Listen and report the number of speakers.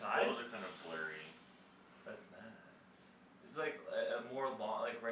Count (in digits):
2